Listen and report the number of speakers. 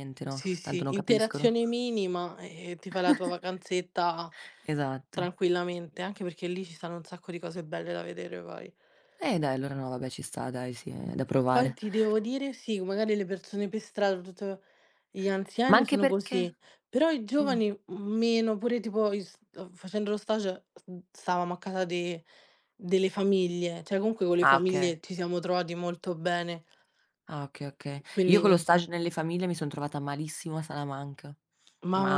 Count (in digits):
2